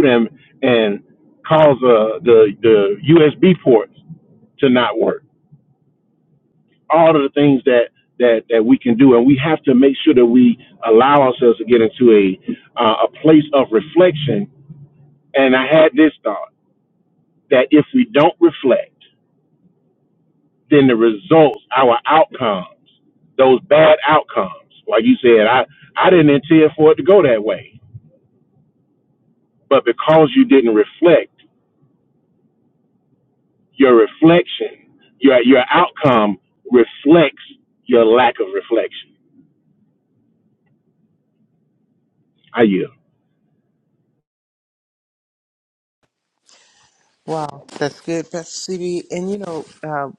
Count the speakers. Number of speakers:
2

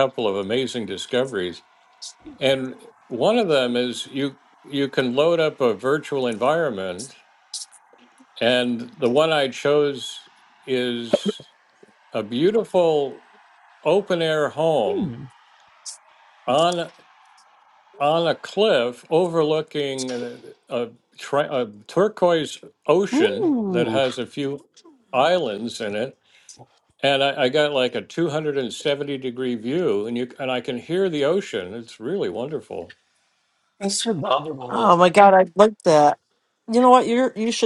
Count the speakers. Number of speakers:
3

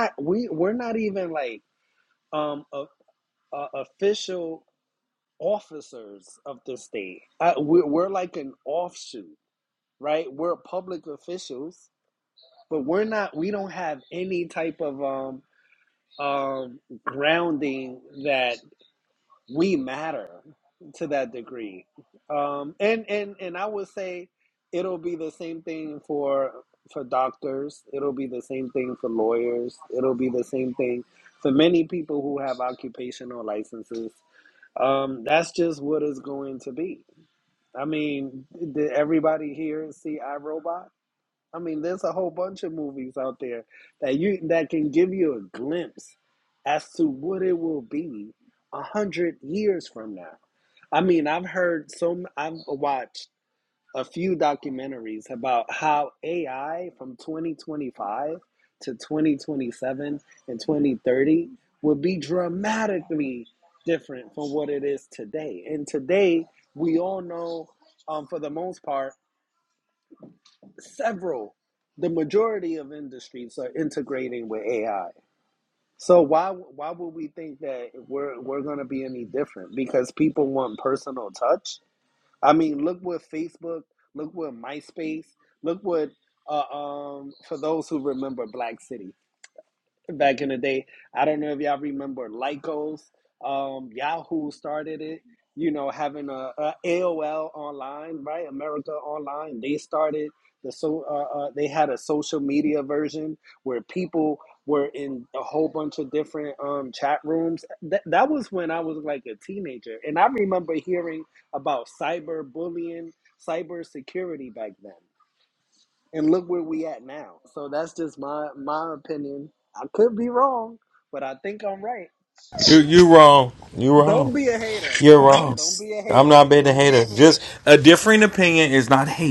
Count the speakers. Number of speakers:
2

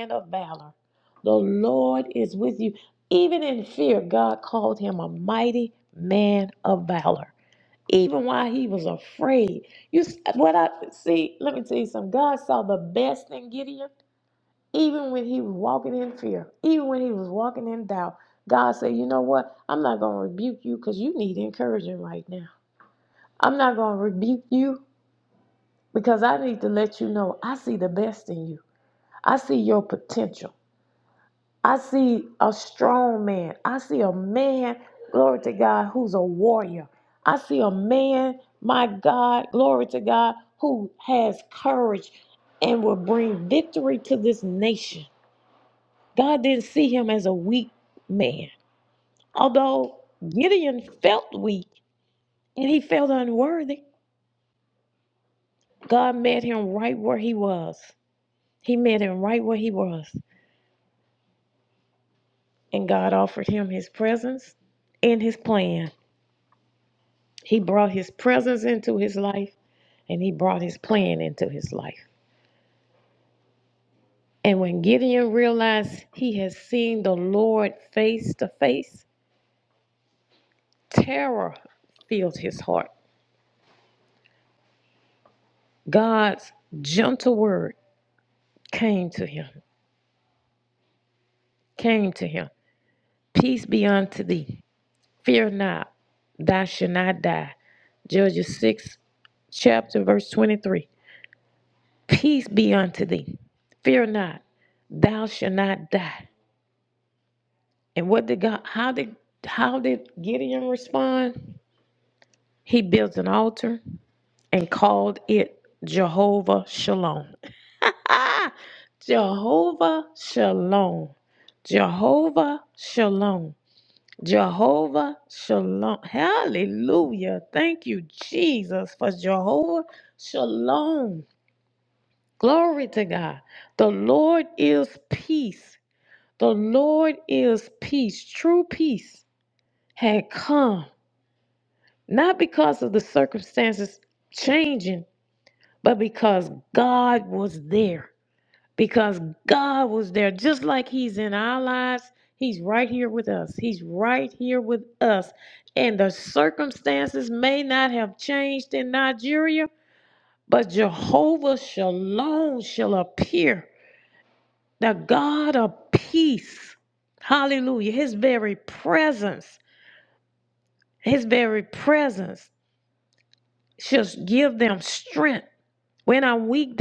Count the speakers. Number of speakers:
1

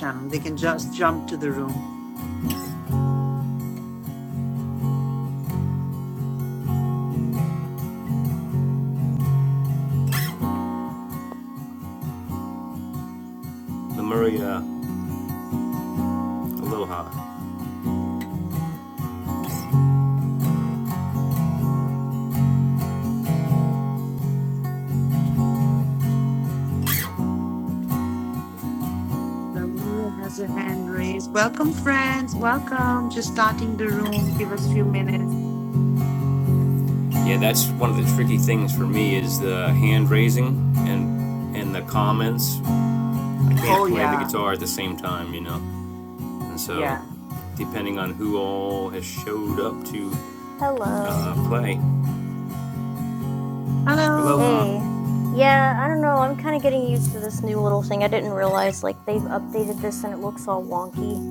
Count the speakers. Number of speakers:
3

